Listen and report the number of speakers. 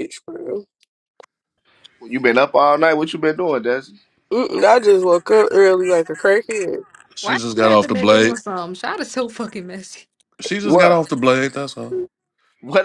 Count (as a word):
four